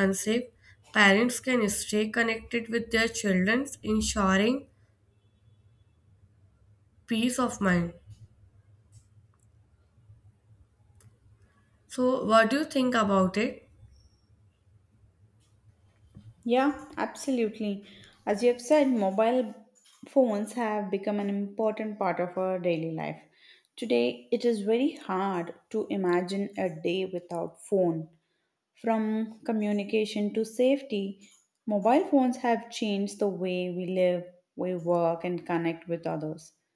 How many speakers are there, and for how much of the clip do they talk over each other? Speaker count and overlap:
two, no overlap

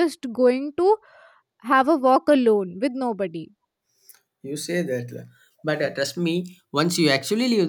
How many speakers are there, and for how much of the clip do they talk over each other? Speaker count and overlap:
two, no overlap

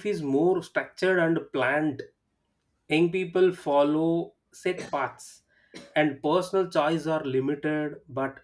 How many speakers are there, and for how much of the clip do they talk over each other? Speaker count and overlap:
one, no overlap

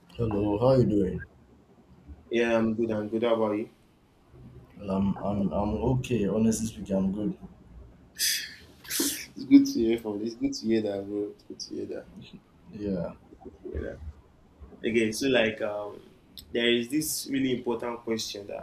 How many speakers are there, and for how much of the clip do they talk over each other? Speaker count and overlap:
two, no overlap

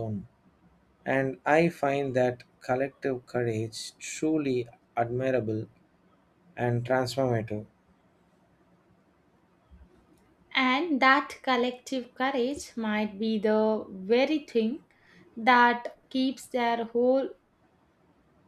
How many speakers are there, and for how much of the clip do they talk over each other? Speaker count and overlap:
two, no overlap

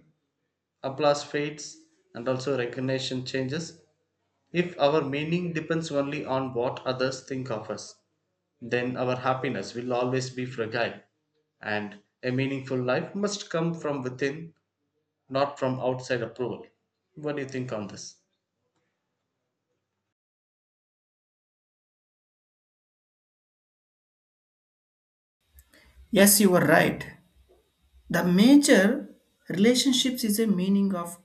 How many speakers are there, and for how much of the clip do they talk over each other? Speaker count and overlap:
two, no overlap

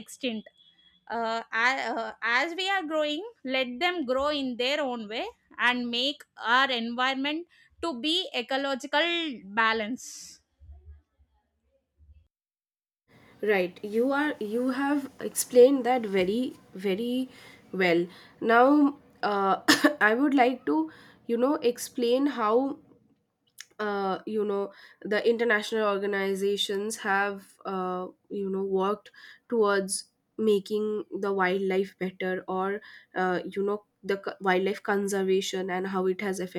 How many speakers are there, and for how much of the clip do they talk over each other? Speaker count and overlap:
two, no overlap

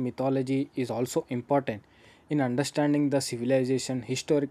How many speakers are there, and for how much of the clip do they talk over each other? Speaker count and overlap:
one, no overlap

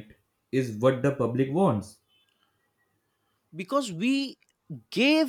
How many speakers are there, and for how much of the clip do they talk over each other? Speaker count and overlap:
two, no overlap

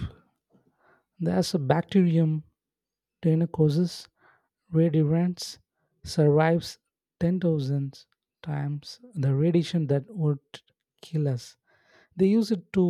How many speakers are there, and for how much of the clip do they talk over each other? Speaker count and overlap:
one, no overlap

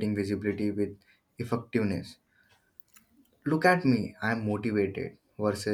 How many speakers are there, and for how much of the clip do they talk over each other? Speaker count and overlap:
one, no overlap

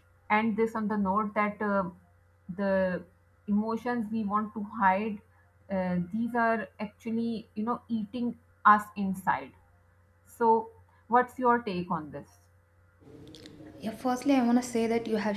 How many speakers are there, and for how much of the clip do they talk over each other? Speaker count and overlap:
two, no overlap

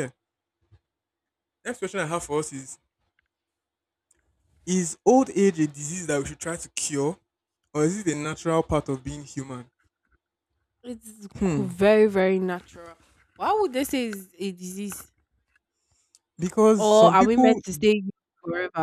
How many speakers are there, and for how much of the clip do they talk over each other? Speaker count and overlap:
two, about 6%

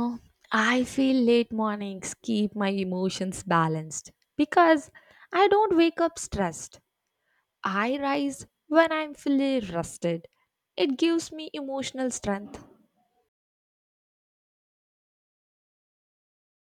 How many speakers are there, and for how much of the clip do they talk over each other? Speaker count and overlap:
one, no overlap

